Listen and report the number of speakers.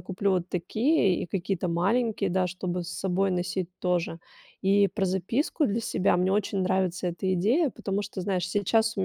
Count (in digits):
1